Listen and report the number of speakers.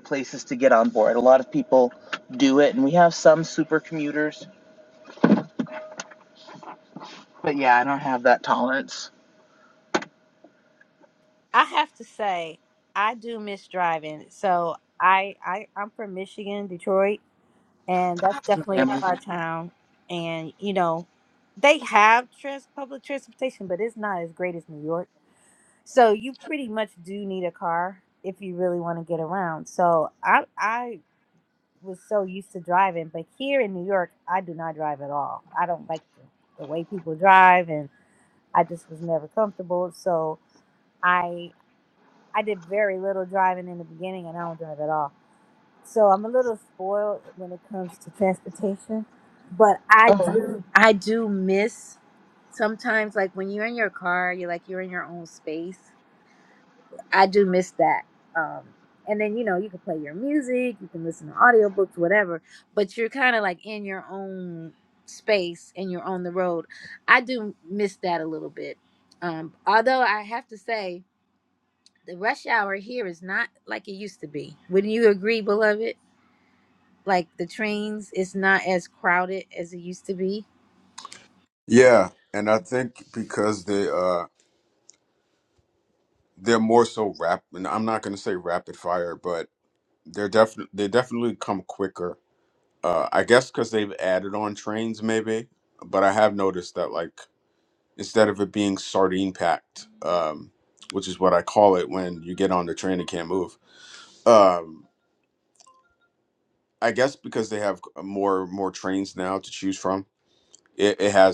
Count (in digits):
3